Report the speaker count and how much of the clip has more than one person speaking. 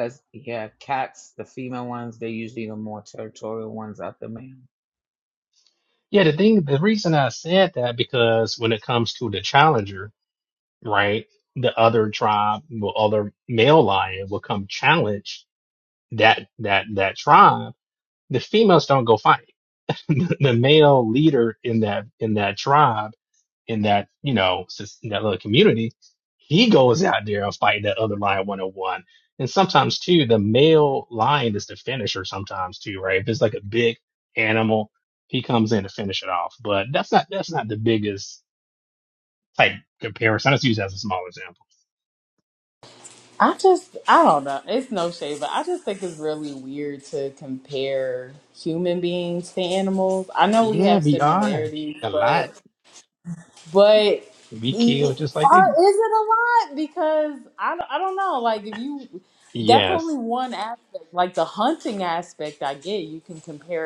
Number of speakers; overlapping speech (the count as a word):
three, about 5%